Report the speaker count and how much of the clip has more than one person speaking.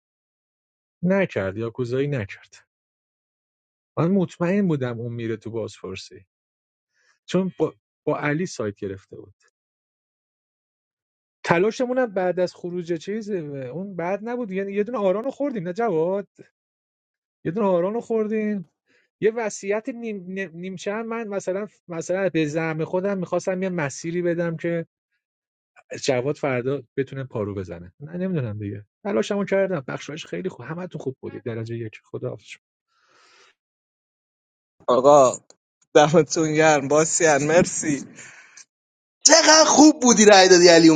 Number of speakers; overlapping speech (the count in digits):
3, no overlap